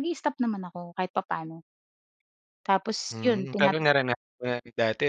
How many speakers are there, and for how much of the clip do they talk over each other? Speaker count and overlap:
2, about 12%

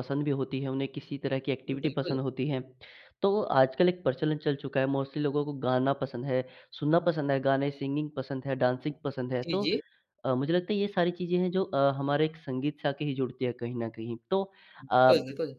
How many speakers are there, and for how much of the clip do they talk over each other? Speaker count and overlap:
2, about 7%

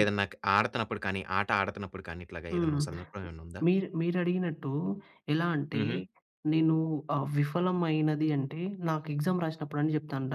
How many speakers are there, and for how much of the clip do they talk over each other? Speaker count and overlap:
2, about 6%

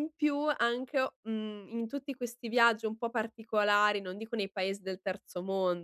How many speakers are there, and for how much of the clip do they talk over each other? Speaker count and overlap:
1, no overlap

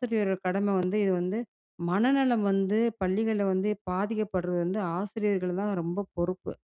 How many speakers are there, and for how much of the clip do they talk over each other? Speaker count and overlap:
1, no overlap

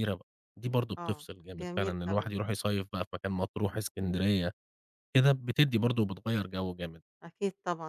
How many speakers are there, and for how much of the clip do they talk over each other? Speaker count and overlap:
2, about 11%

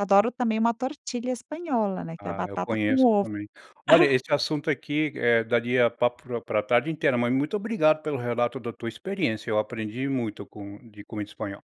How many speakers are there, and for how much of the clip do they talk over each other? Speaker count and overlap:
2, about 9%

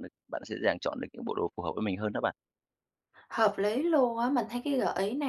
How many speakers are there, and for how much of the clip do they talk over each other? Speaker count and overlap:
2, no overlap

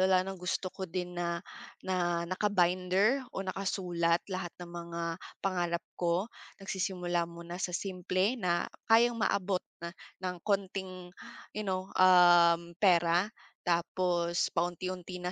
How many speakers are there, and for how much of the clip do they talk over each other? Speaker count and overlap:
1, no overlap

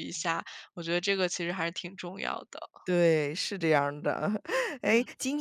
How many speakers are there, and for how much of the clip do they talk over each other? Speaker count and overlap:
2, about 4%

